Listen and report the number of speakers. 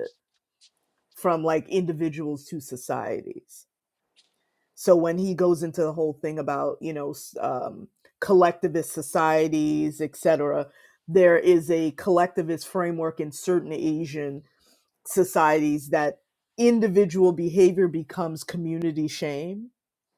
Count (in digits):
1